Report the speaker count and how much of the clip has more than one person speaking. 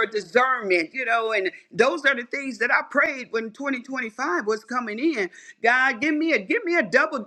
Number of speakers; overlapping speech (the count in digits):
1, no overlap